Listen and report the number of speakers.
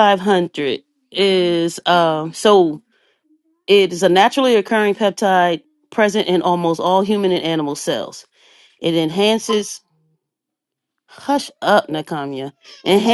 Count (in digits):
1